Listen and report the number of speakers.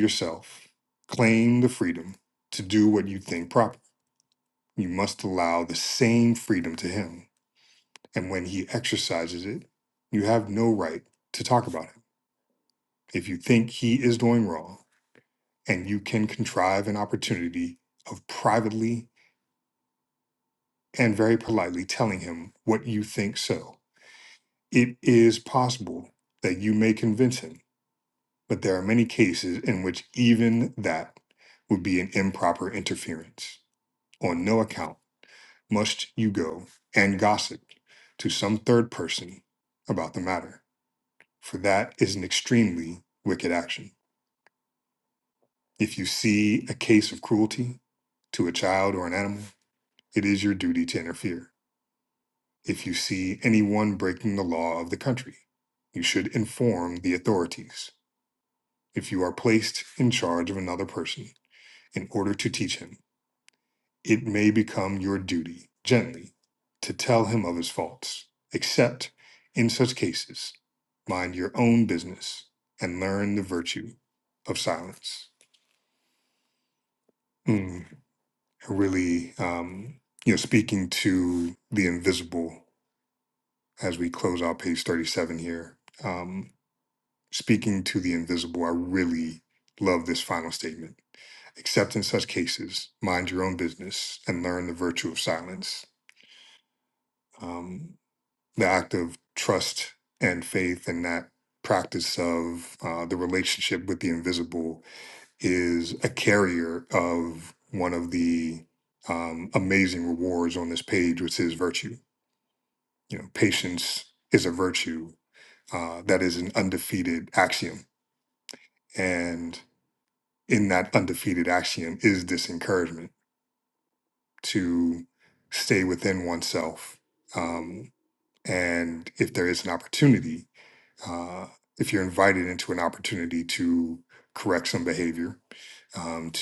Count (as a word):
one